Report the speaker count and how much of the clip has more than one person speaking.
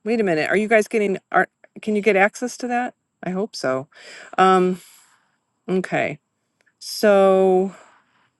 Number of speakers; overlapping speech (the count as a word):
one, no overlap